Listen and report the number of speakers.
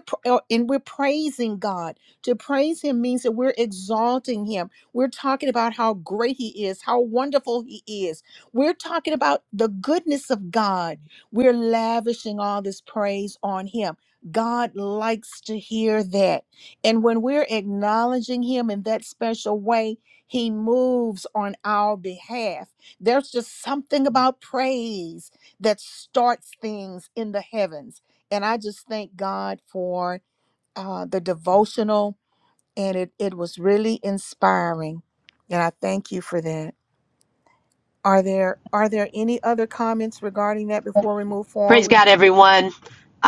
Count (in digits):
2